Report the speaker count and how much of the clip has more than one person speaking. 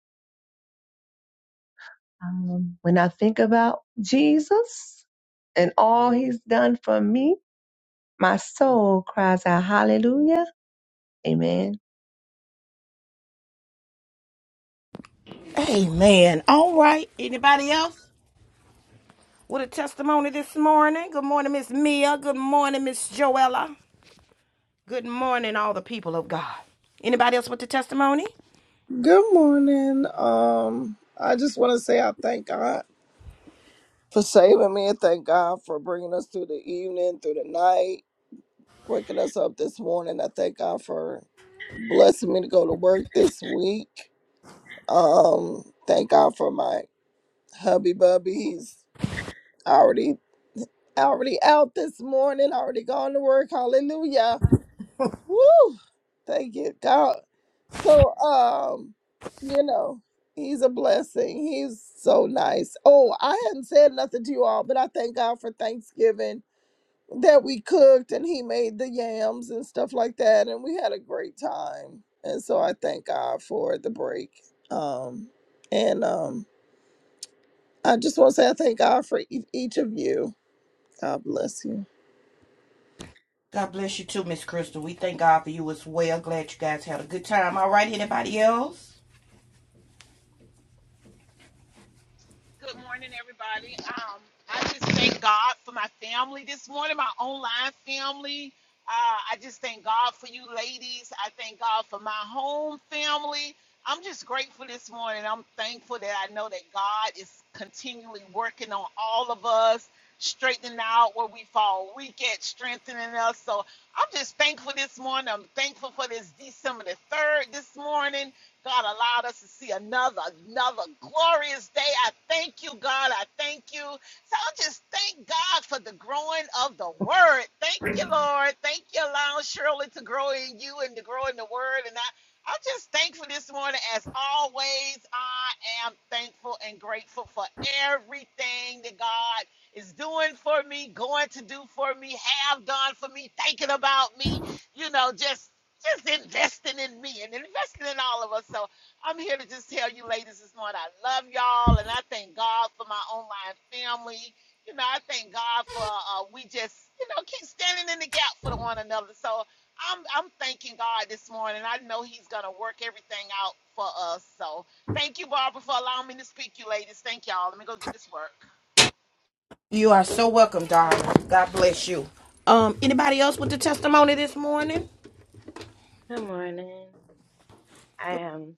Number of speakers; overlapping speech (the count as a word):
five, no overlap